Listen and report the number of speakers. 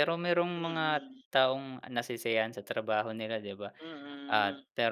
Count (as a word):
two